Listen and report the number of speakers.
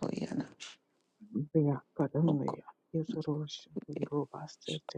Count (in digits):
2